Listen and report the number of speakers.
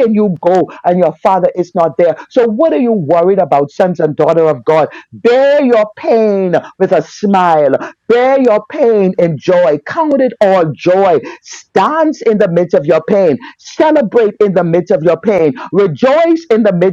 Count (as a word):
one